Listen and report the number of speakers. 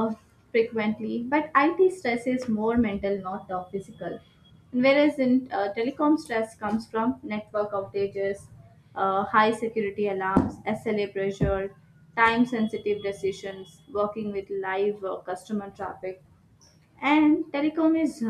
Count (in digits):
1